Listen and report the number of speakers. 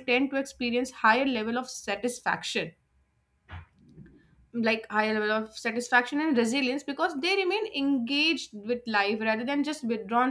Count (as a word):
one